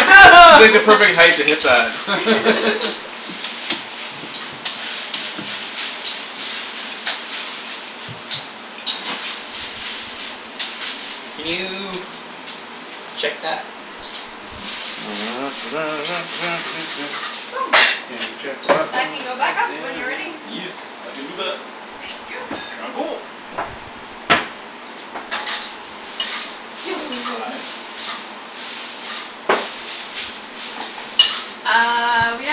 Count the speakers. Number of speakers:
three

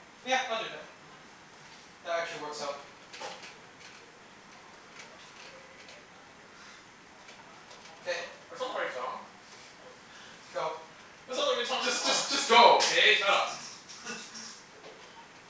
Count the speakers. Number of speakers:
three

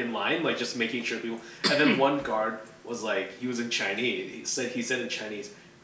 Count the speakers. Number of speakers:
one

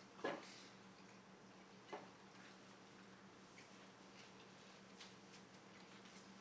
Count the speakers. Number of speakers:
zero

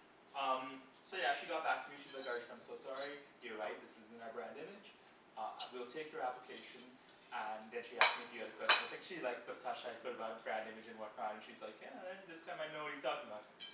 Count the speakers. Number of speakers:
one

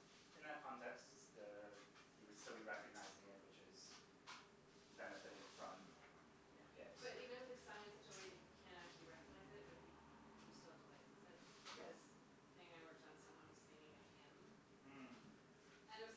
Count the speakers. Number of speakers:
two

